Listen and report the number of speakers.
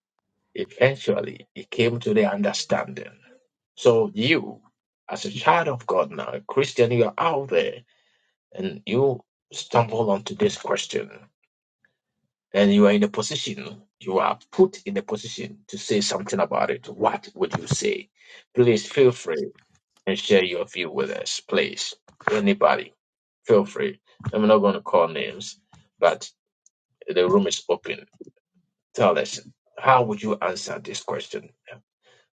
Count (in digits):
1